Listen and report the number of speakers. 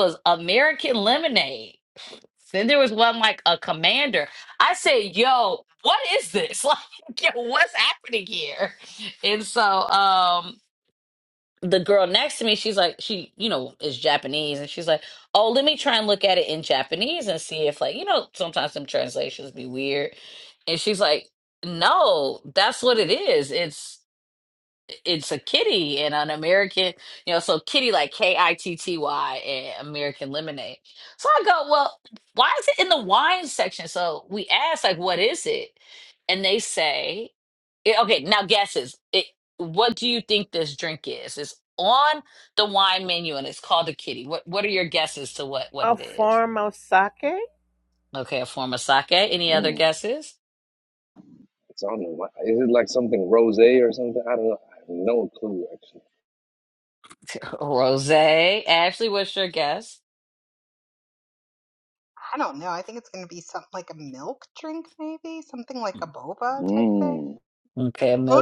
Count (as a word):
four